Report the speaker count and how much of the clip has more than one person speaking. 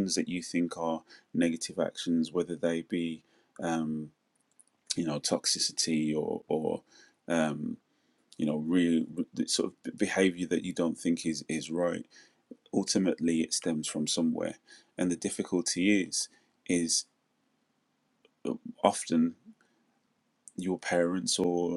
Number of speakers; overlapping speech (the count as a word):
one, no overlap